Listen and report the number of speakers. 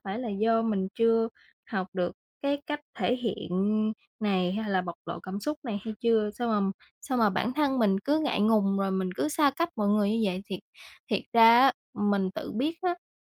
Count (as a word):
one